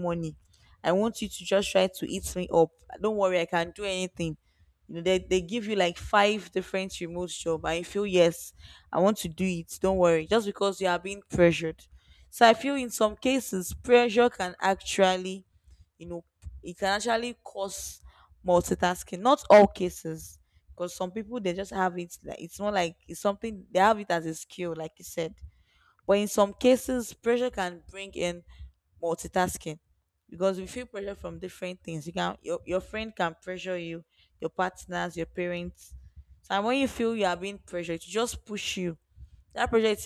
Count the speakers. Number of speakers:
one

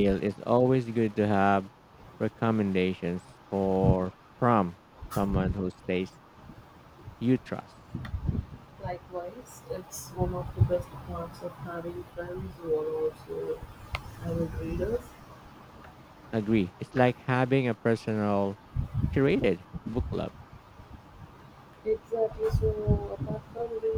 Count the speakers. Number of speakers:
two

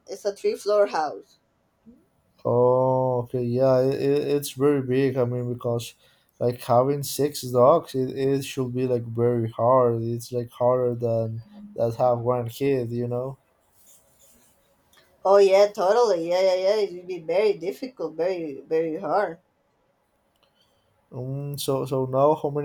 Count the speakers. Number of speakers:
two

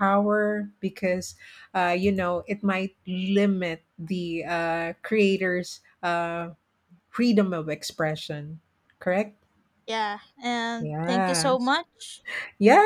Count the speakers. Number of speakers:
two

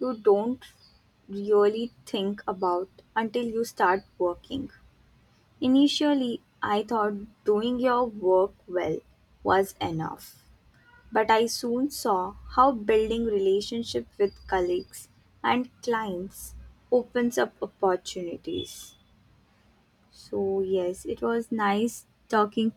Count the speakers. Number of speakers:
one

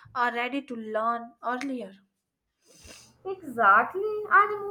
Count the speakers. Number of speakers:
two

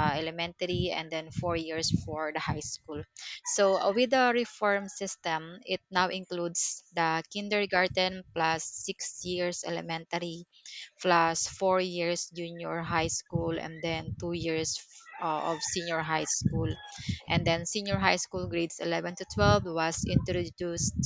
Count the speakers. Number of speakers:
one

